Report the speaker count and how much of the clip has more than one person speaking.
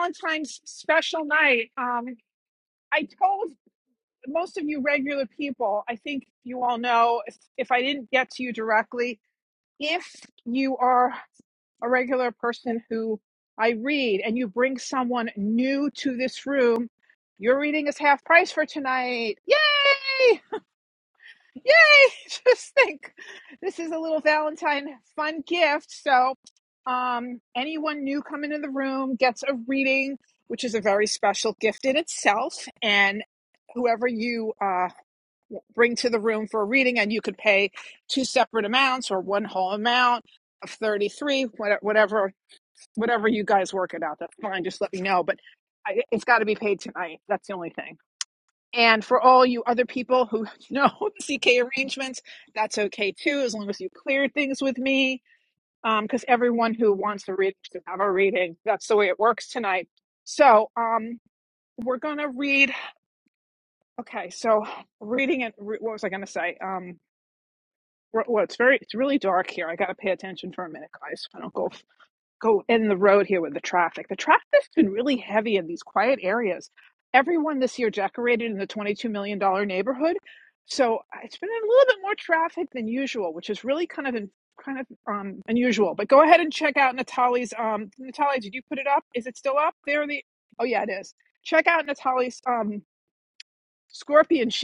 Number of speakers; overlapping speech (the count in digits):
1, no overlap